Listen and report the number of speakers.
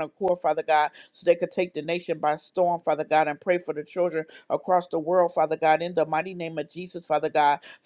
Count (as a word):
one